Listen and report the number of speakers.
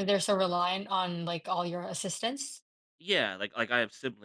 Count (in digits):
2